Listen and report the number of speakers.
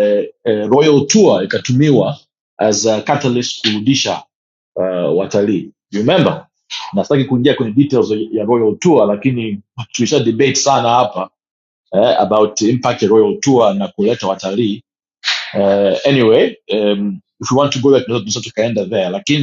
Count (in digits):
1